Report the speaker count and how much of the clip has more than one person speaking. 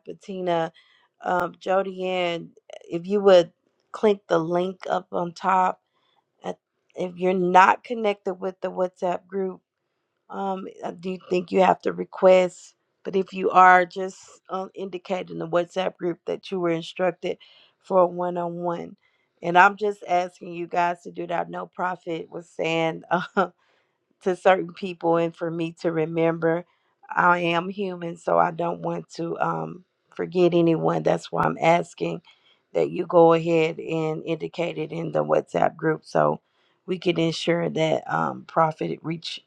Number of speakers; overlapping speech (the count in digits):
1, no overlap